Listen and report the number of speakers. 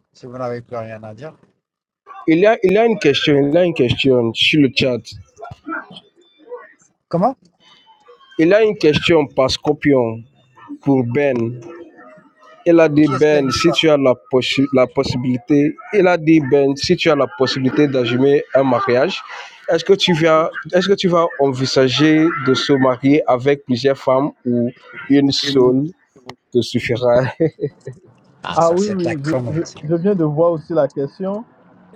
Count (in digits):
3